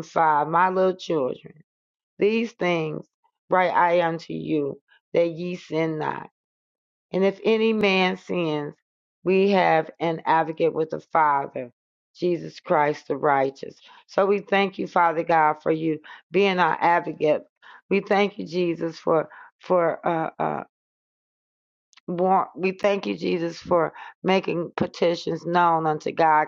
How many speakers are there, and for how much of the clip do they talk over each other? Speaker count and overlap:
one, no overlap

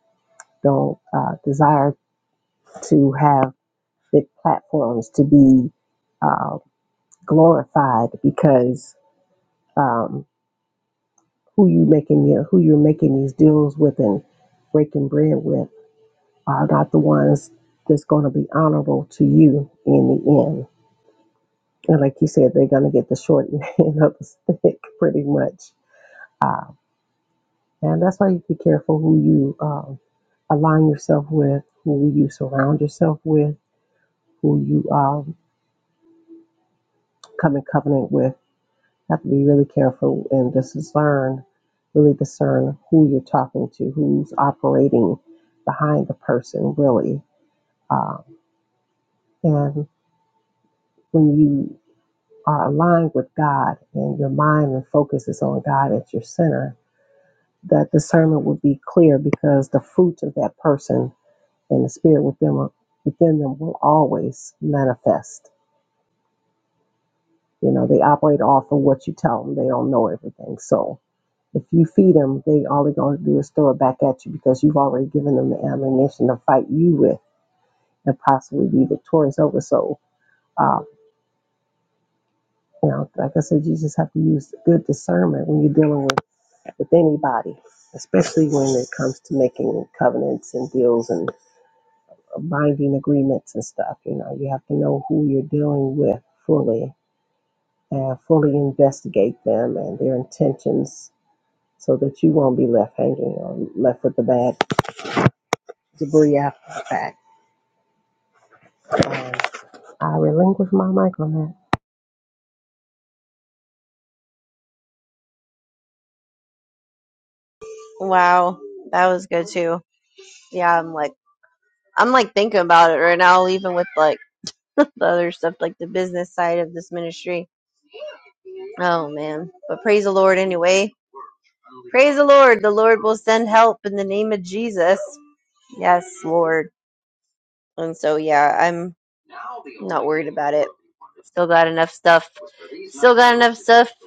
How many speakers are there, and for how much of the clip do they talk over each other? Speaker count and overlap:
two, no overlap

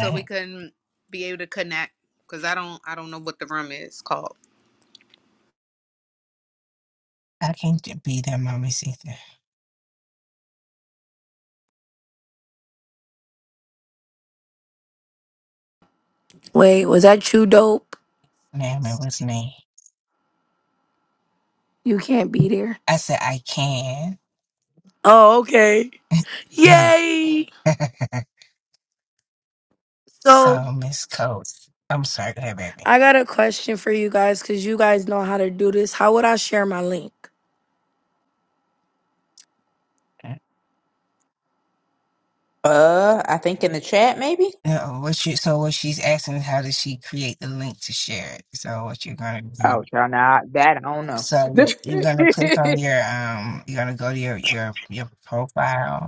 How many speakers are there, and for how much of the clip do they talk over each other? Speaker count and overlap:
four, about 2%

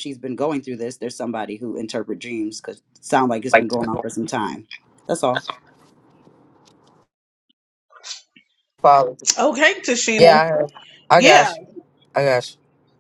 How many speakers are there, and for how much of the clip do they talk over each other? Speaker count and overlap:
three, about 4%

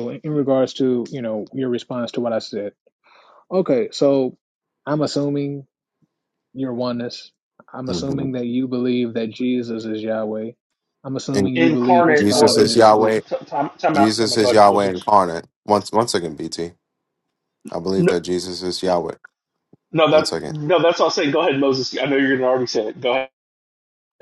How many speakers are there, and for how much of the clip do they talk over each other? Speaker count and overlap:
three, about 17%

